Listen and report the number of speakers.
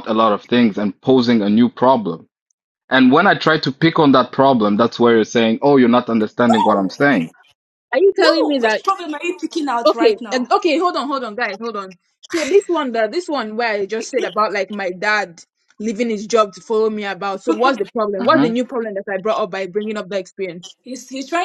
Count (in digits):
3